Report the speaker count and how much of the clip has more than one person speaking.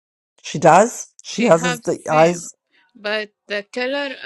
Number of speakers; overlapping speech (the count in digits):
2, about 24%